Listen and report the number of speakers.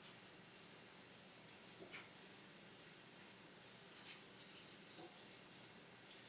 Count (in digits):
0